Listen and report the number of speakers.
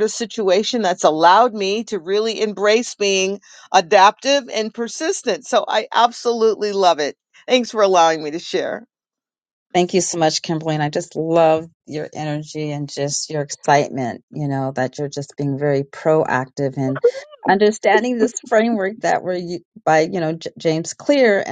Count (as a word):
two